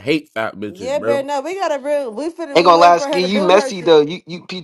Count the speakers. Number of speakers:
3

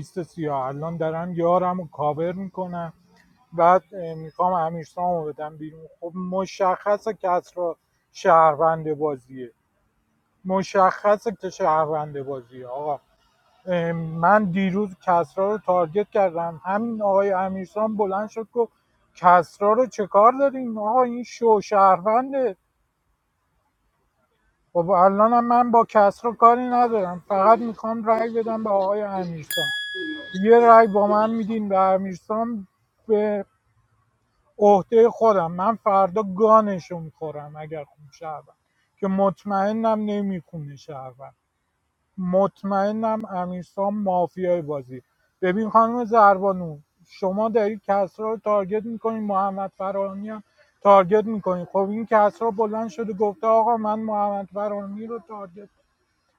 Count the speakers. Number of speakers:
1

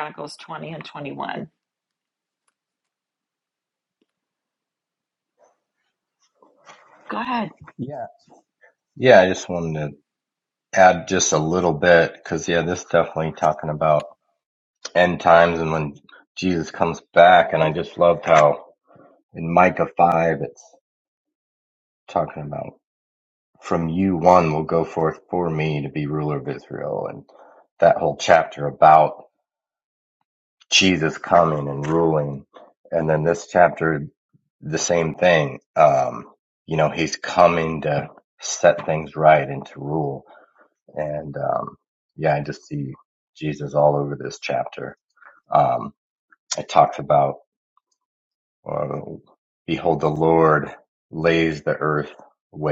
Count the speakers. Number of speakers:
2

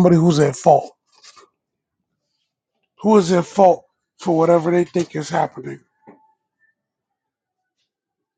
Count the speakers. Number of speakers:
1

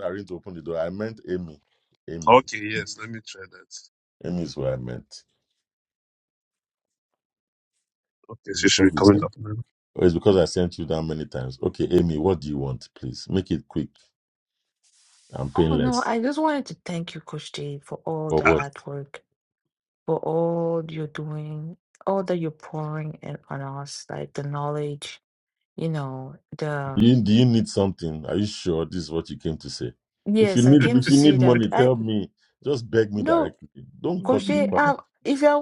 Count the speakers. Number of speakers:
3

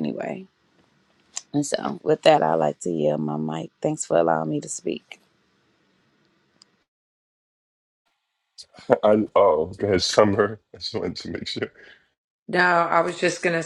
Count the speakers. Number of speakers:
3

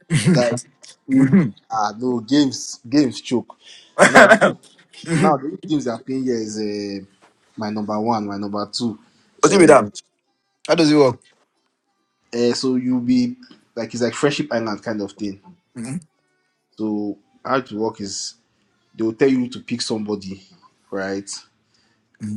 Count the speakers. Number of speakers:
2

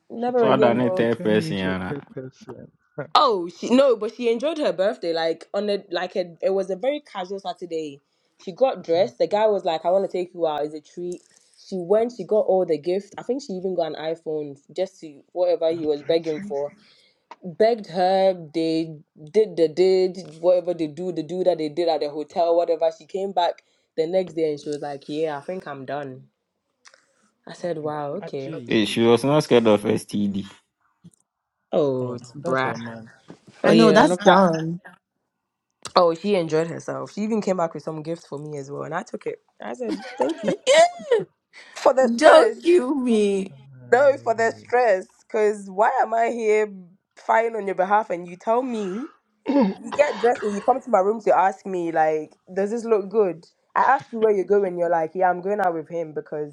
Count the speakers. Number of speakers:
4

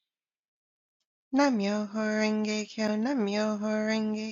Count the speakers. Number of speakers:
1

